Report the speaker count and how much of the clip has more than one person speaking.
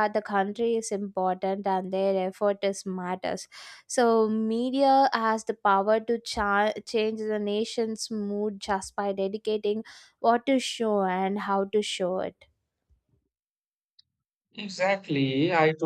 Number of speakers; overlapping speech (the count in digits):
2, no overlap